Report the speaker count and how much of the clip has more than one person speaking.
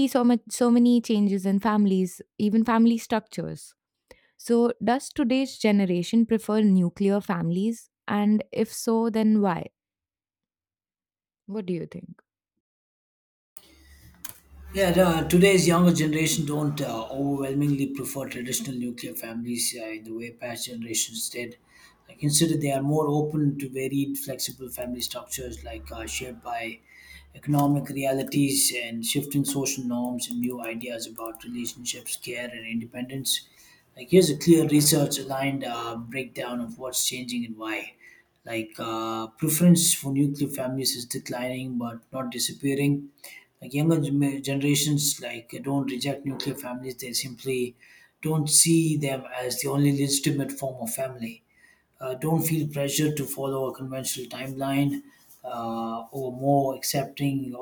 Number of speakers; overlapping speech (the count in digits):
2, no overlap